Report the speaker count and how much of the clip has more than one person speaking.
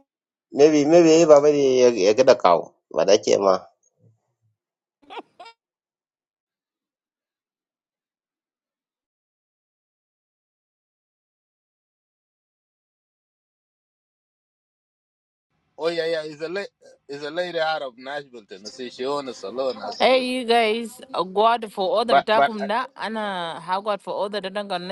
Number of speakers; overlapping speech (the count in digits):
3, about 3%